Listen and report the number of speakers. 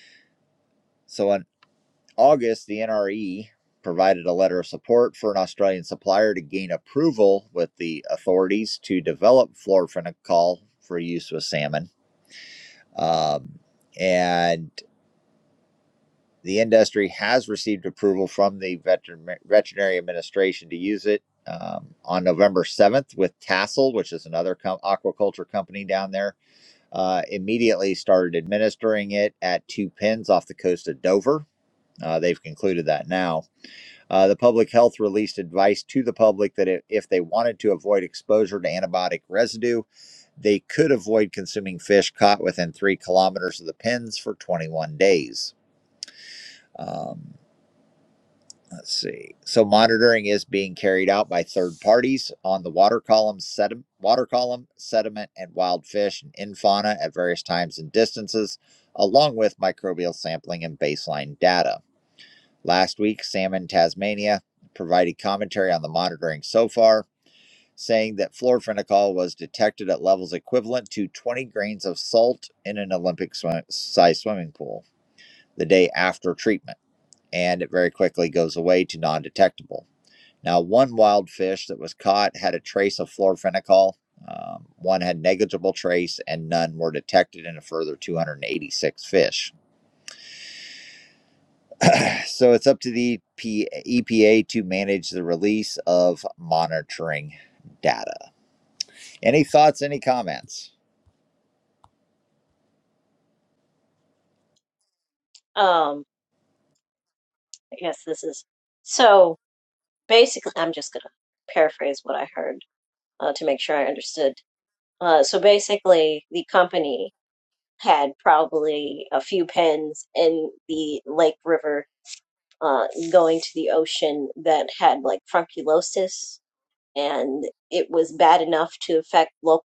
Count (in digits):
2